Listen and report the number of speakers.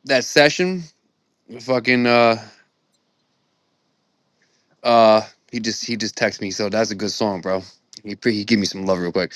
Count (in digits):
1